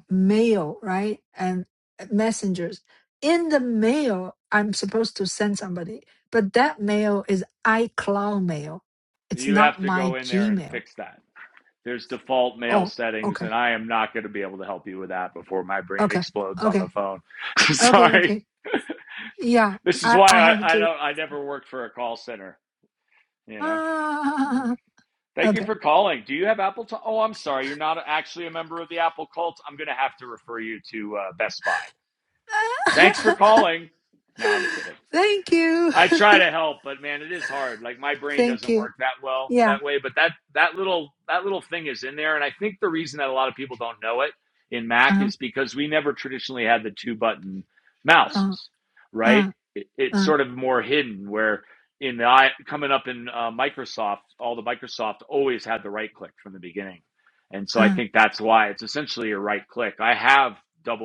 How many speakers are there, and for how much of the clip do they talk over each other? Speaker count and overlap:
2, about 11%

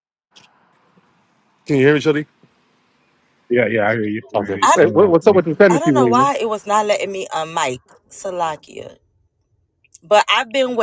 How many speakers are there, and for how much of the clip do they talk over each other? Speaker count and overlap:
3, about 15%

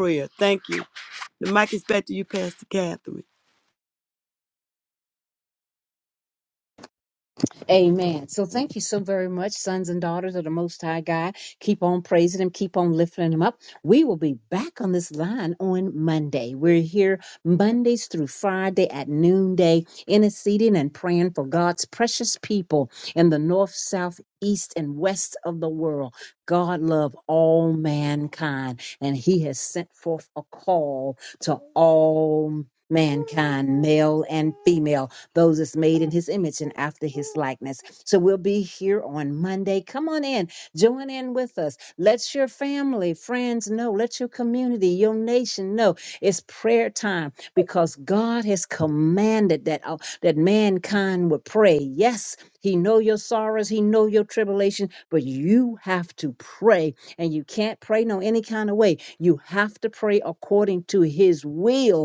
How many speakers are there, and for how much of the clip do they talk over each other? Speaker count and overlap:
2, no overlap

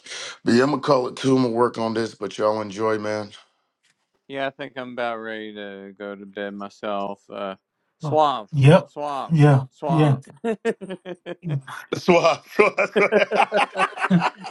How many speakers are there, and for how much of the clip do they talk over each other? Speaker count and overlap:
3, about 3%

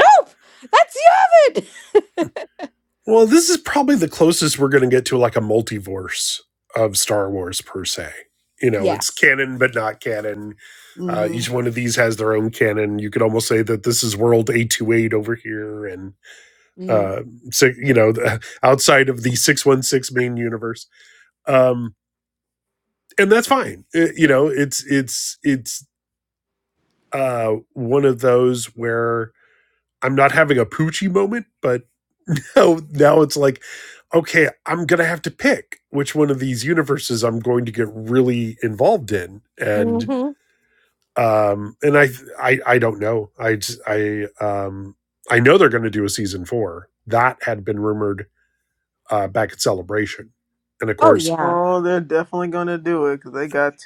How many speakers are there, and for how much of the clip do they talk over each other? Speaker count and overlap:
3, about 3%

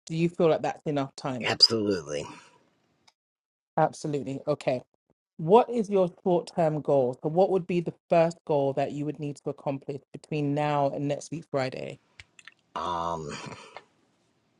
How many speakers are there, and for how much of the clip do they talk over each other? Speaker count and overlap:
2, under 1%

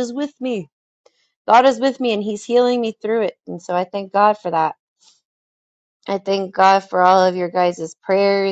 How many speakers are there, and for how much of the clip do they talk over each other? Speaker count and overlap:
1, no overlap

